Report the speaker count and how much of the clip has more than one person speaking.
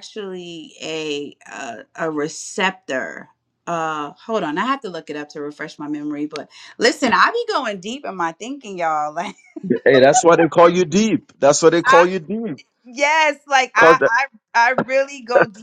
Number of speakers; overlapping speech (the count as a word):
two, about 3%